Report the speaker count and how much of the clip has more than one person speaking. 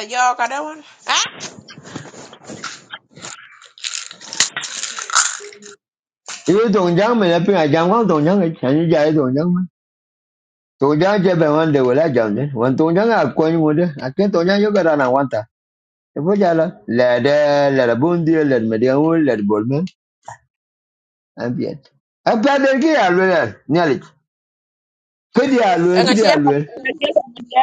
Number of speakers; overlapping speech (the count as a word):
two, about 2%